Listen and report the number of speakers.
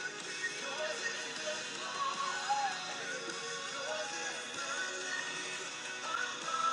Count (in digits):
0